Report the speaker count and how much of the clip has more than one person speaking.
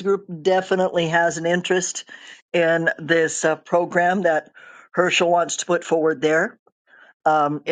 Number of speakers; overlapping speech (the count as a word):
one, no overlap